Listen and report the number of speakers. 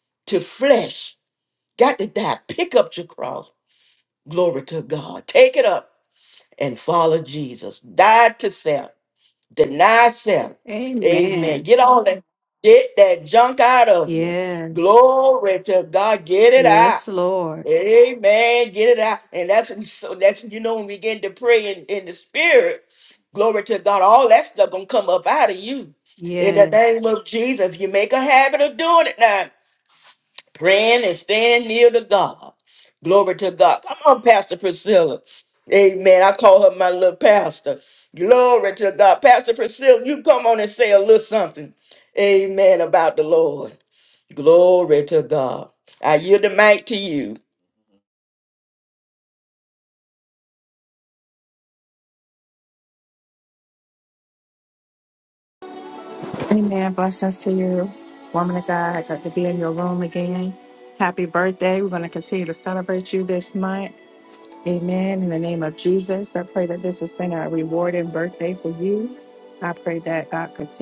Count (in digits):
3